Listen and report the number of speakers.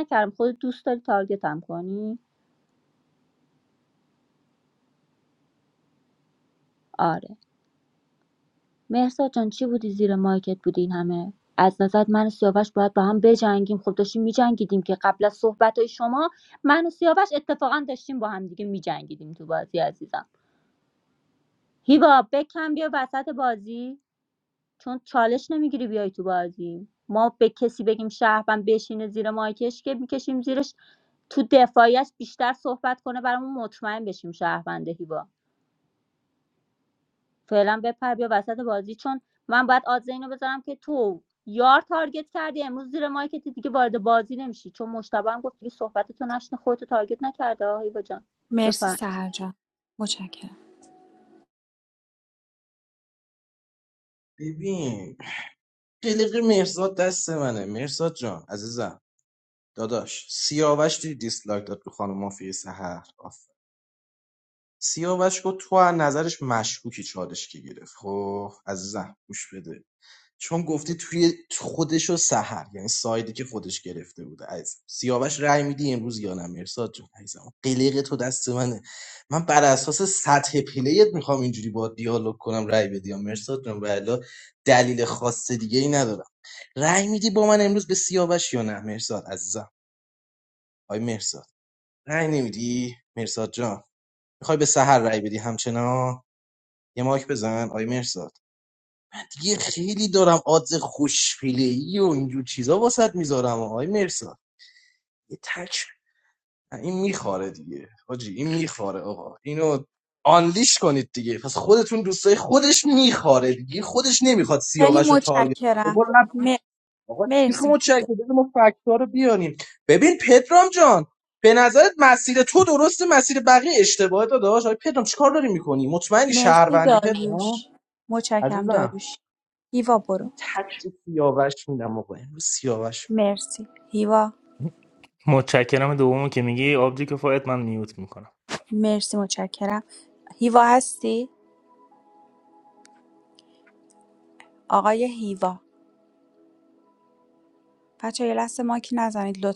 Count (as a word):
four